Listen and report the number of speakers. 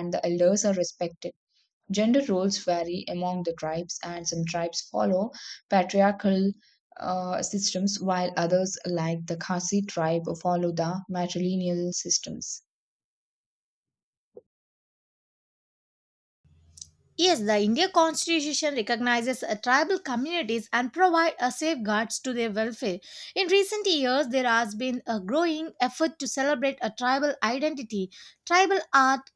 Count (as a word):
two